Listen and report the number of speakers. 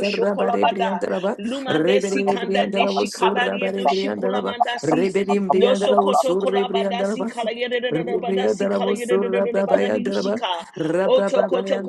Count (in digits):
2